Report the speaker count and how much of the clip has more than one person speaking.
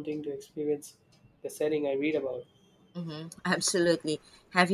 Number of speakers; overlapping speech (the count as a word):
two, no overlap